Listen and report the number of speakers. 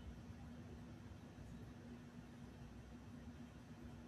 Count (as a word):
zero